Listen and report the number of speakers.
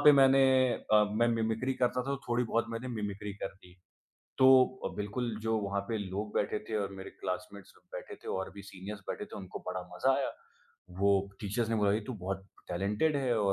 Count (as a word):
one